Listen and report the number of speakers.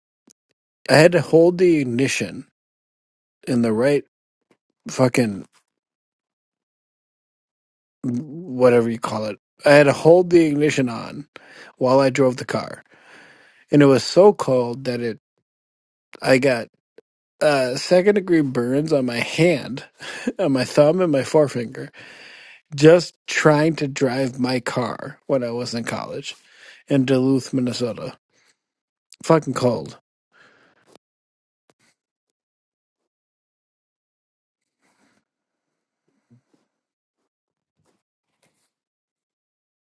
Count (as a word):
one